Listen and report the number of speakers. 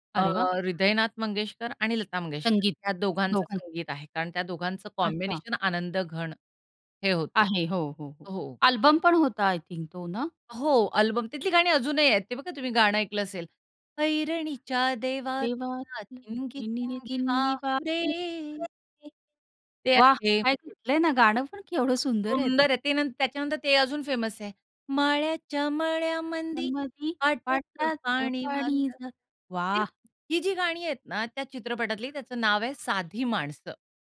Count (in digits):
2